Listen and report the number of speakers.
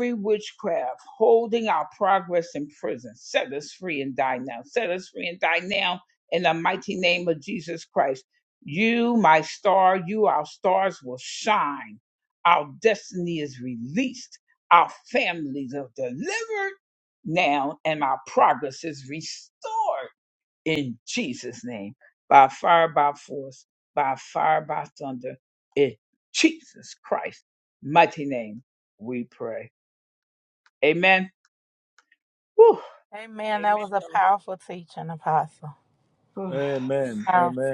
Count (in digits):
3